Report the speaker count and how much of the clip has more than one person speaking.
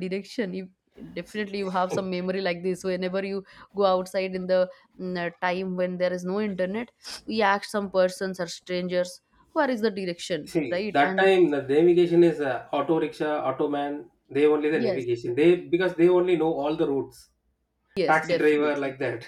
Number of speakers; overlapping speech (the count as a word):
two, about 10%